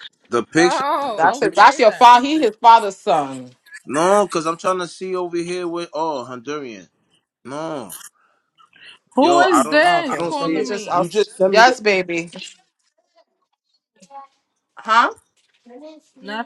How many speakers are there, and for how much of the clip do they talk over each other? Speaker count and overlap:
3, about 21%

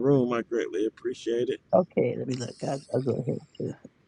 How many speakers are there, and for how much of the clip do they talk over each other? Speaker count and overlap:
2, no overlap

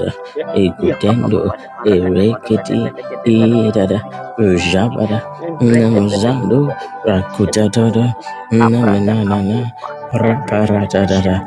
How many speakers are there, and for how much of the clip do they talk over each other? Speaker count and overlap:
2, about 71%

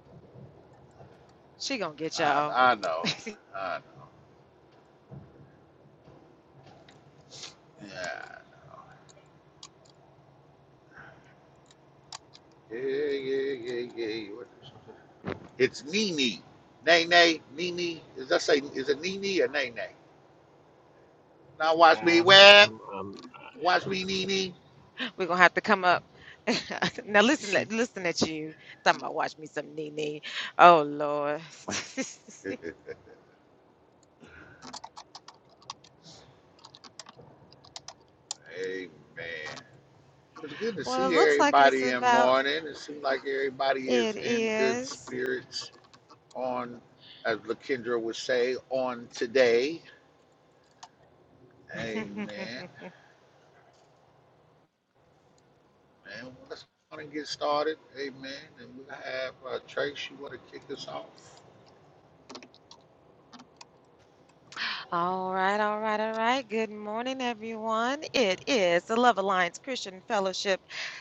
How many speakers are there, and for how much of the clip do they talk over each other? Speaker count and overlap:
3, about 5%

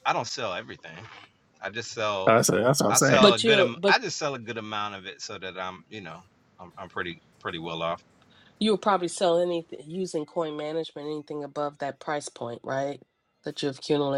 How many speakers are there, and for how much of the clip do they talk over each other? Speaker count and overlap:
3, about 8%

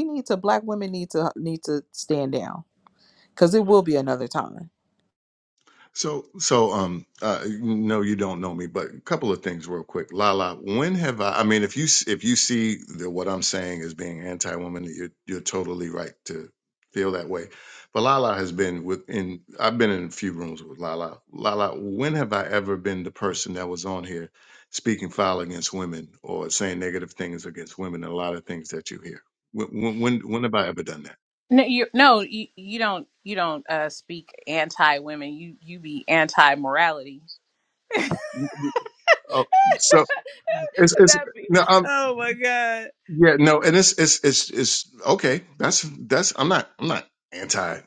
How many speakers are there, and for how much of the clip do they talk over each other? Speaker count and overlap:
3, about 1%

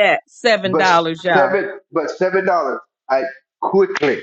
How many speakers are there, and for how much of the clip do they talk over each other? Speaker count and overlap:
2, about 13%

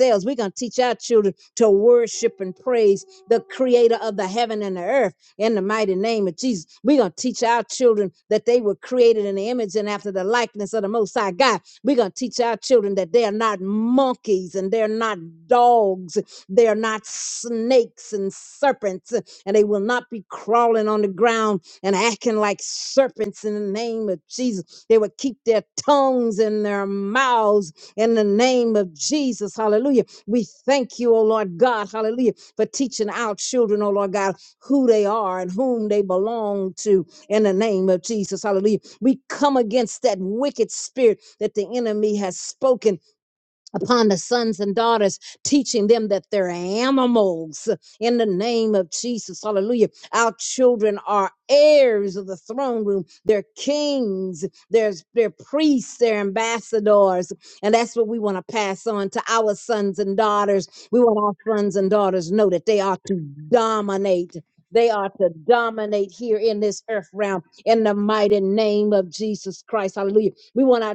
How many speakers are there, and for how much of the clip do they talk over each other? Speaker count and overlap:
1, no overlap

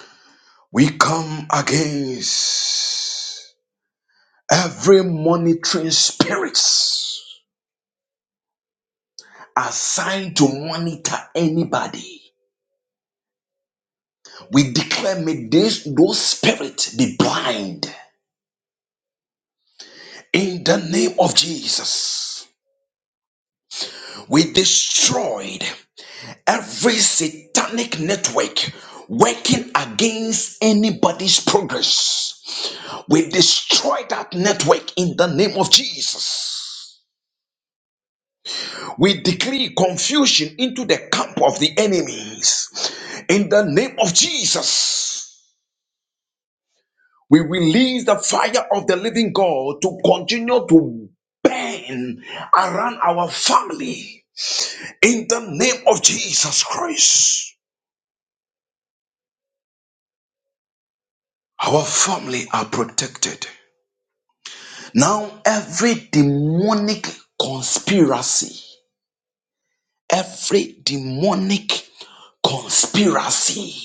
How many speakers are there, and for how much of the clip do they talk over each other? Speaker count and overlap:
1, no overlap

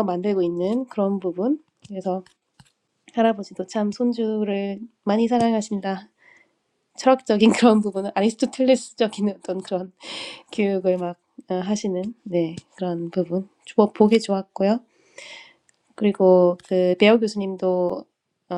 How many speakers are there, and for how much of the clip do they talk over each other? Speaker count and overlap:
1, no overlap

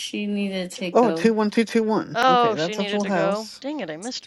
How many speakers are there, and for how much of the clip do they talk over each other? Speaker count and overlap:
3, about 37%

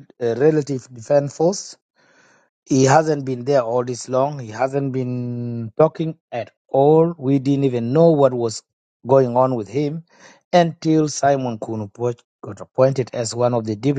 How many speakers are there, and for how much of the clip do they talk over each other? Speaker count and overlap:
1, no overlap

